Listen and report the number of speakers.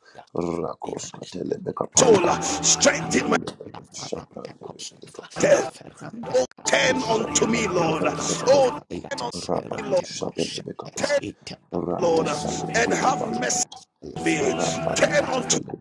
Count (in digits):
3